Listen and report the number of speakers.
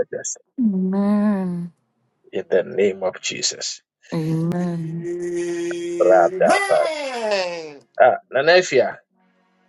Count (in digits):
3